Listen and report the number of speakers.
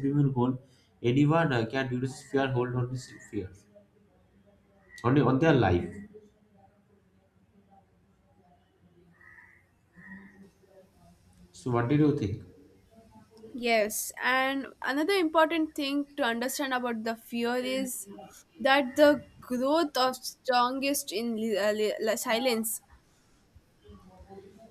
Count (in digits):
2